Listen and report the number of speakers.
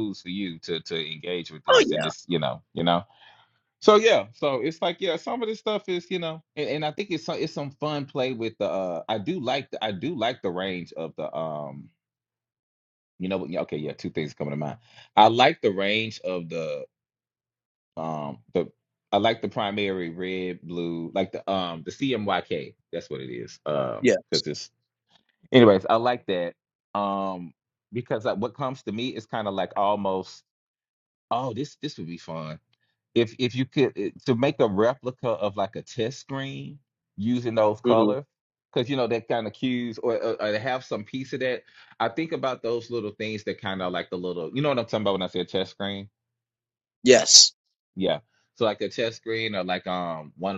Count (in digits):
2